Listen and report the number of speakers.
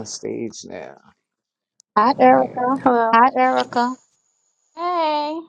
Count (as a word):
three